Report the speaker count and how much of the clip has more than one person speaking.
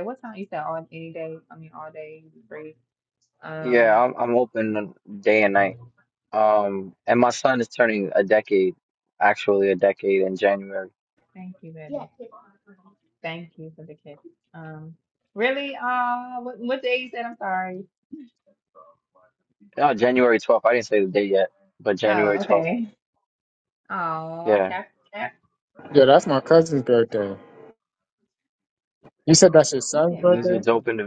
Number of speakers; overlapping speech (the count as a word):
three, about 6%